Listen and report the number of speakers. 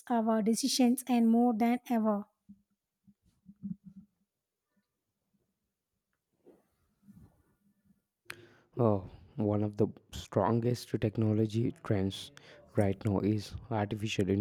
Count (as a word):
two